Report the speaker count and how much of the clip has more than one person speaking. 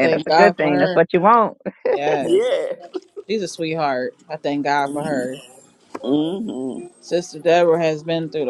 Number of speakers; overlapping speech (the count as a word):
three, about 14%